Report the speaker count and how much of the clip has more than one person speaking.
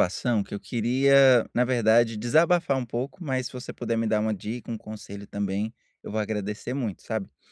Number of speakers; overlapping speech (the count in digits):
1, no overlap